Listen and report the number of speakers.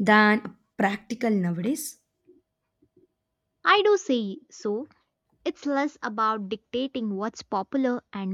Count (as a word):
two